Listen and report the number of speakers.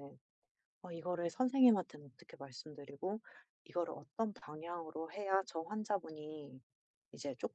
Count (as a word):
one